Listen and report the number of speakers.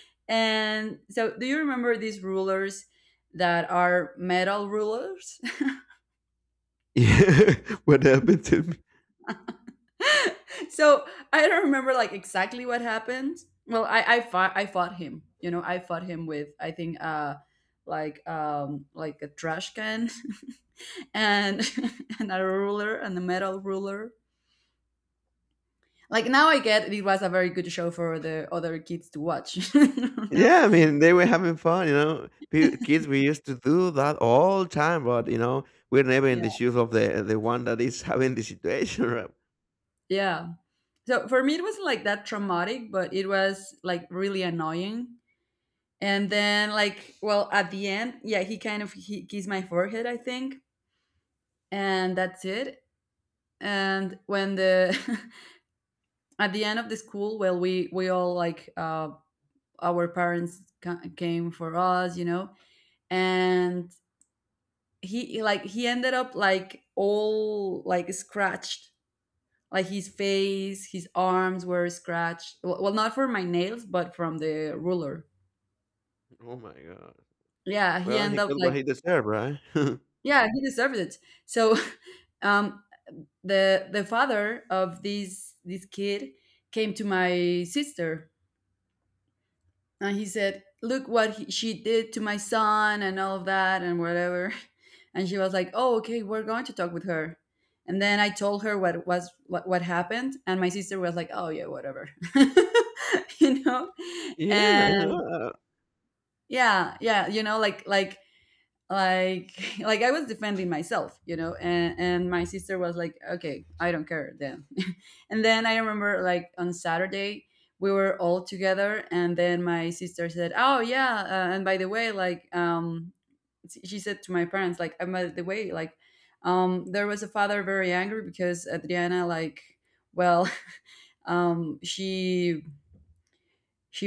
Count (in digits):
2